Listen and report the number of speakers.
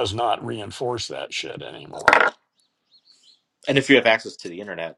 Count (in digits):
2